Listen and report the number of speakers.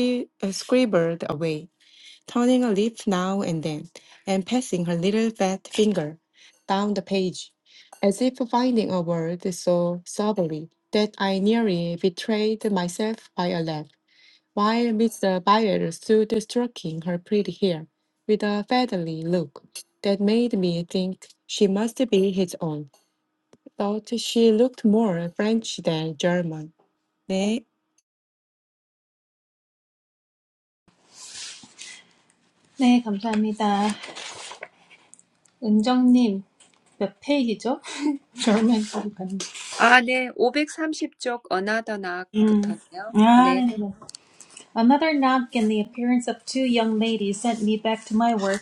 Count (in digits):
3